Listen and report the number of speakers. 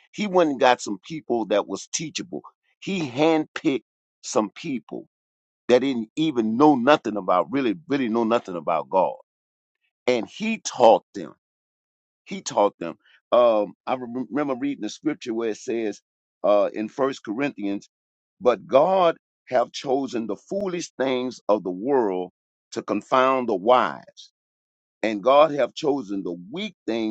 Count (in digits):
1